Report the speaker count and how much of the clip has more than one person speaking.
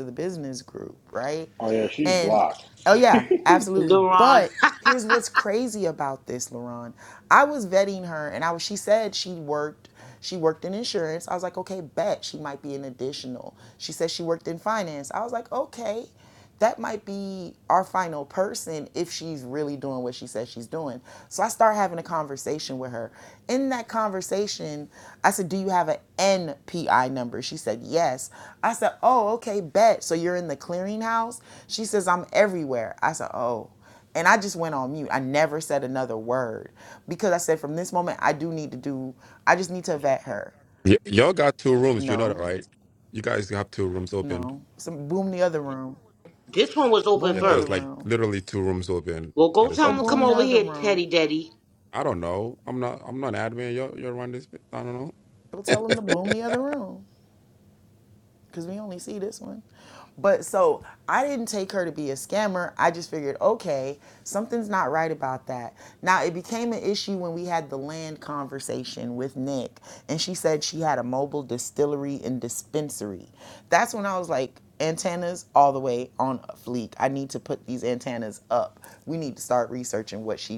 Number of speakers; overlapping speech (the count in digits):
4, about 6%